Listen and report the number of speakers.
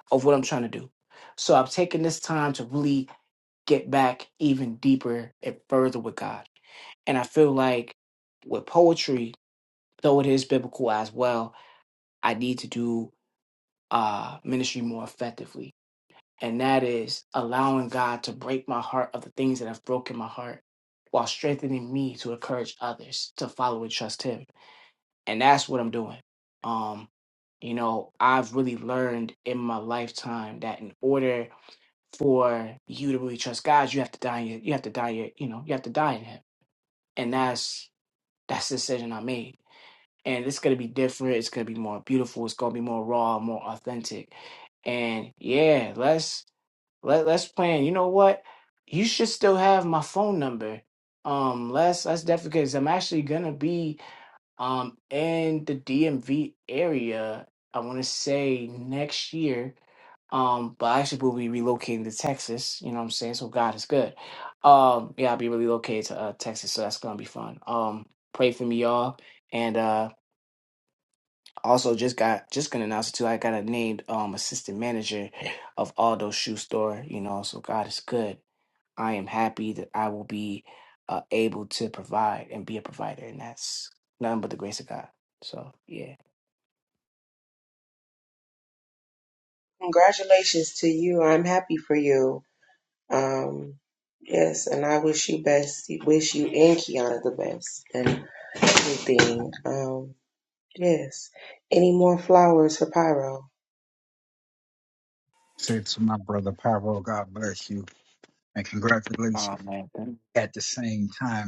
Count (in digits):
3